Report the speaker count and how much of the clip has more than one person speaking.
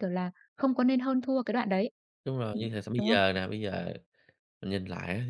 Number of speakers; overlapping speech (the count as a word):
two, about 12%